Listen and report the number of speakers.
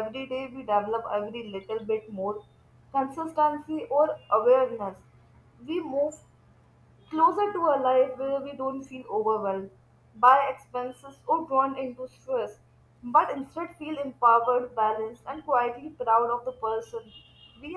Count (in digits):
1